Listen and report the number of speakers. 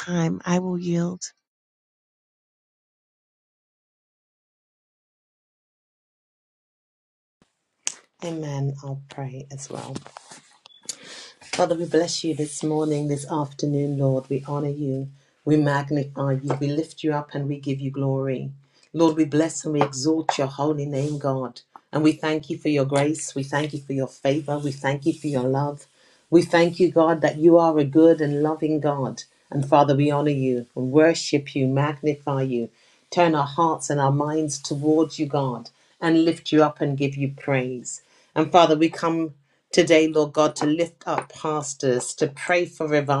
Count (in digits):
2